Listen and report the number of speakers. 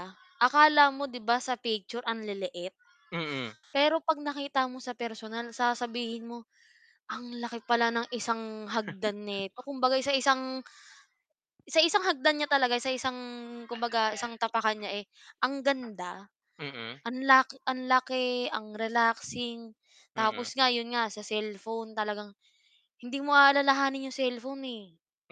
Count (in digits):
2